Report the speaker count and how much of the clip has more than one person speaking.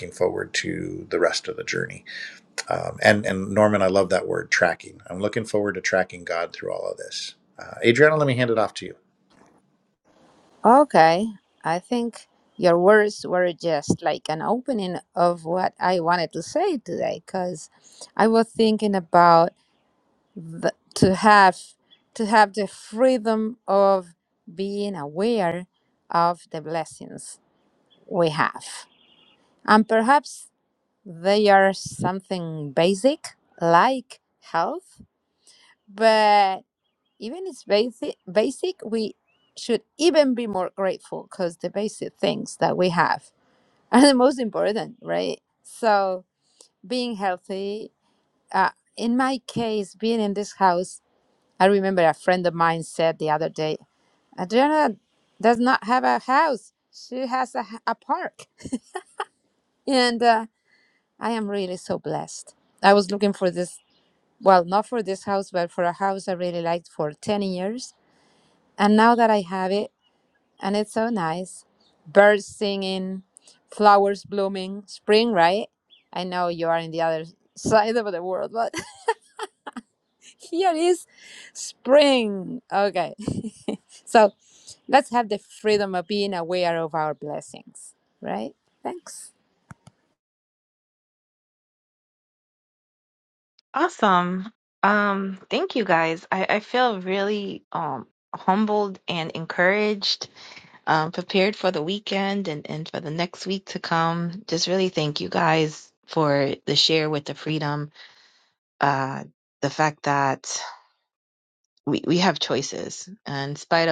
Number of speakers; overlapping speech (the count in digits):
3, no overlap